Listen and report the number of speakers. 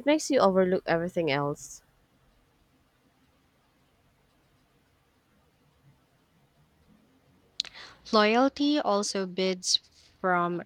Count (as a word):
two